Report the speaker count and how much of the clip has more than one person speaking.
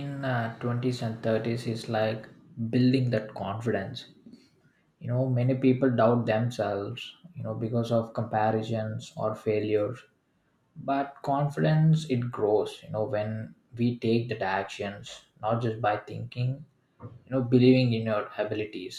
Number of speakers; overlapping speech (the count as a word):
one, no overlap